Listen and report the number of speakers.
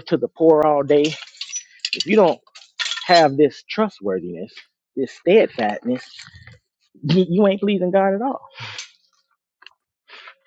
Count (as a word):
one